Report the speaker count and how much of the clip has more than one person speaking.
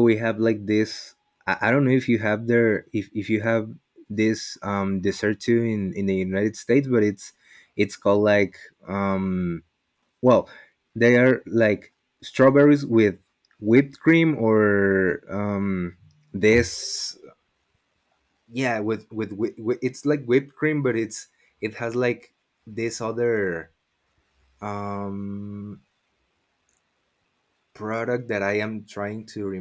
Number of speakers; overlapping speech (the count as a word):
one, no overlap